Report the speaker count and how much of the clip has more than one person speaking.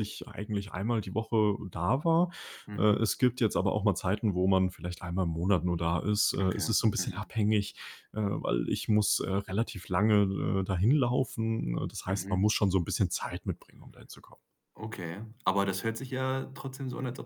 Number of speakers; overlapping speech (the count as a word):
two, about 9%